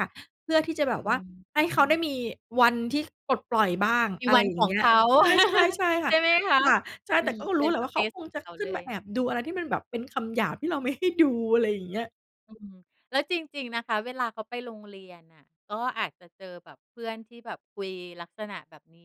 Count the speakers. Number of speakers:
two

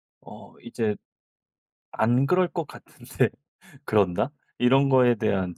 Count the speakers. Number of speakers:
one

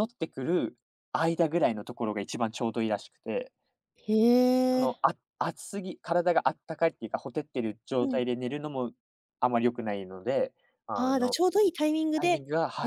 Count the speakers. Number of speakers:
two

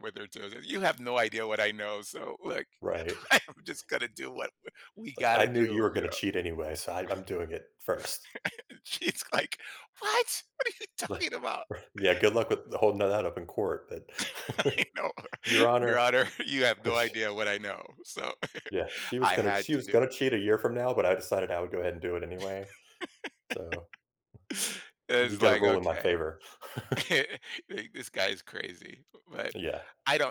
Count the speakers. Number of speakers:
two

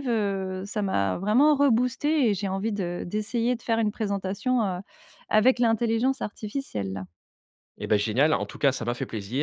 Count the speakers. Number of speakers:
two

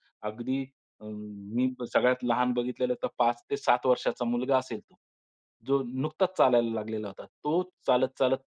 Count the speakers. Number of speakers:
one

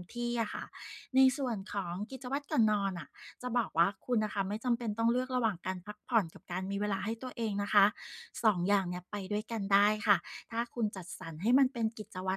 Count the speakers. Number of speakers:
one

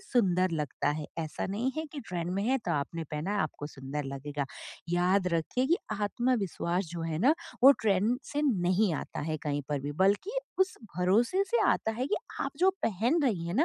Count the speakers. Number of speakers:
one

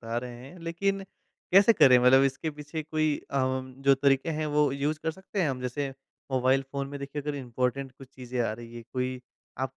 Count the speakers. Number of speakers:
one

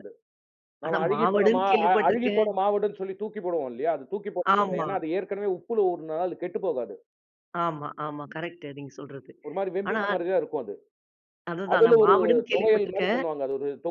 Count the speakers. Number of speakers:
two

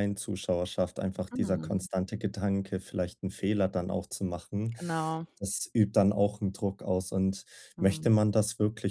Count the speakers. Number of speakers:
two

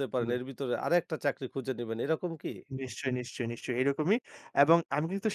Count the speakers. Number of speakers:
two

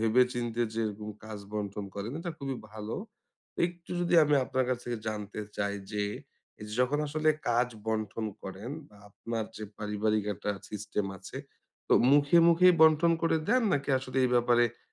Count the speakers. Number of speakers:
one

